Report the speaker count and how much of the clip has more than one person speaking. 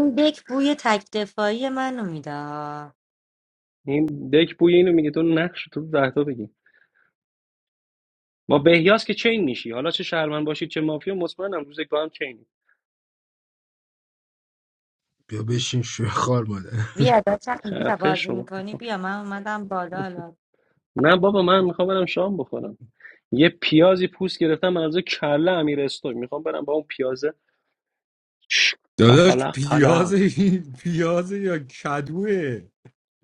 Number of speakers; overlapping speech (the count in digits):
4, about 5%